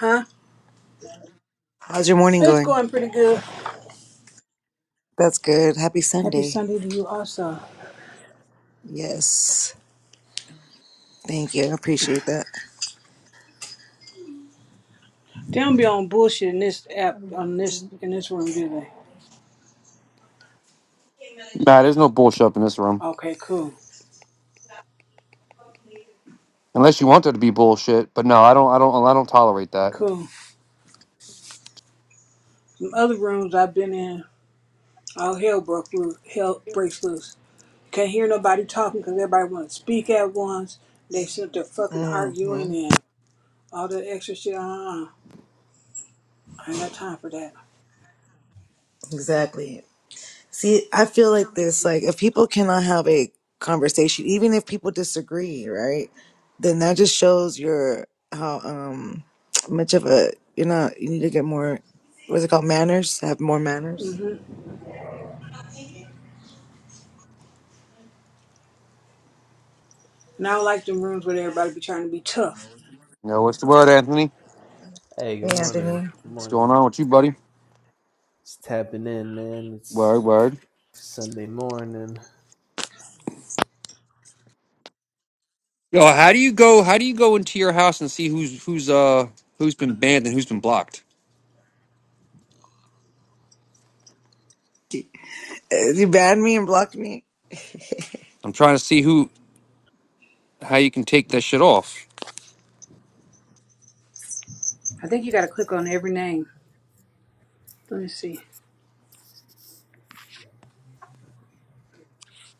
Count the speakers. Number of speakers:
4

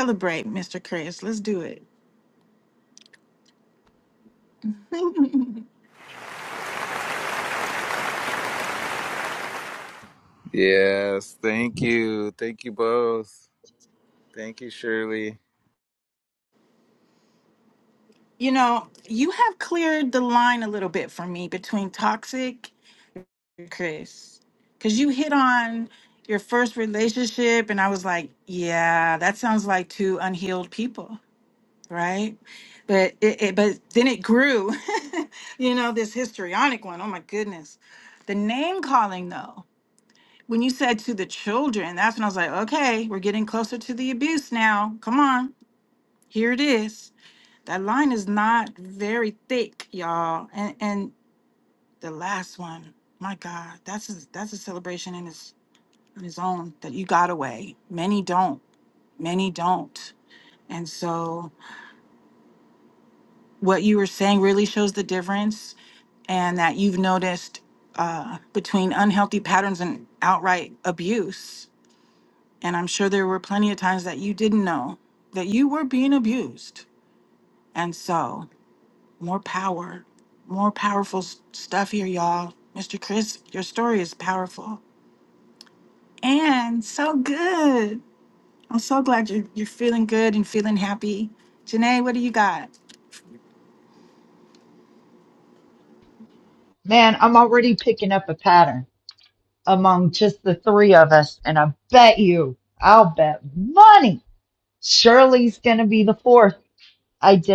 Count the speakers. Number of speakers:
3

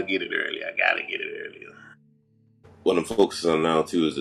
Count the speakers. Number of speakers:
2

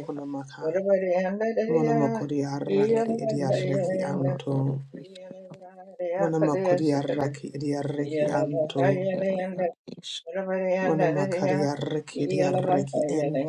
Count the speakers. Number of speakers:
3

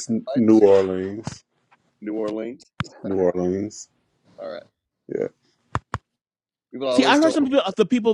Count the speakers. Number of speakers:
3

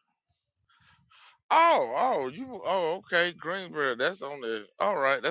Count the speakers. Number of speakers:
1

